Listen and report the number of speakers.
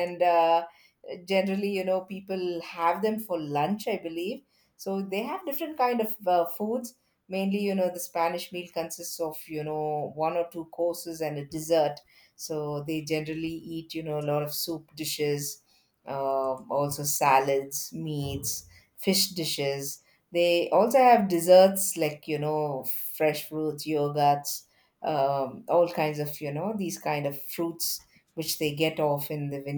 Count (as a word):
one